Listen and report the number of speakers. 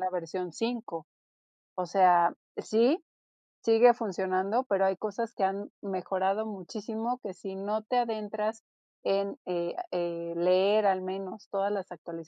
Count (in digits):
1